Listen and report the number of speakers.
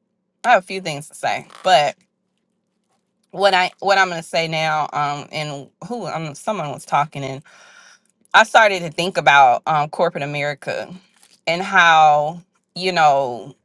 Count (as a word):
one